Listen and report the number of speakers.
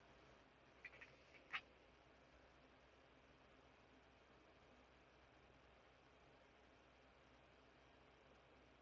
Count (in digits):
0